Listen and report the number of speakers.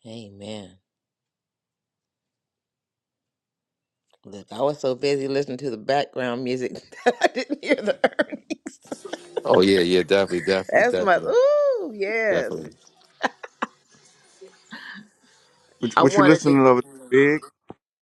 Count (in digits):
3